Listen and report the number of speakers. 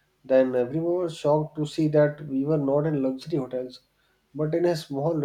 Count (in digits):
1